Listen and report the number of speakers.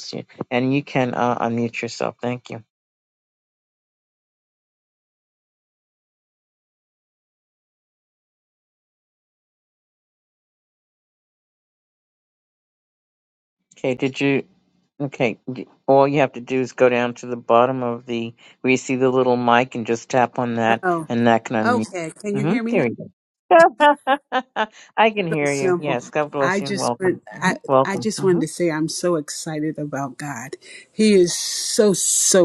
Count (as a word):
two